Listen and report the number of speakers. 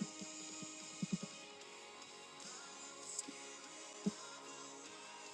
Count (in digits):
0